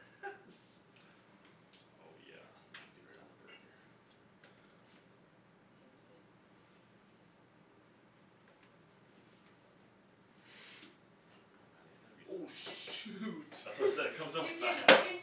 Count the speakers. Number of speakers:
three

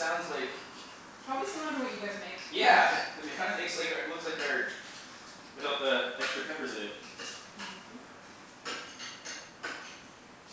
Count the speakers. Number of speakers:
two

